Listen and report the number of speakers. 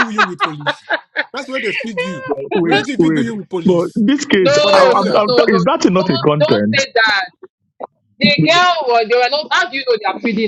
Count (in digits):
3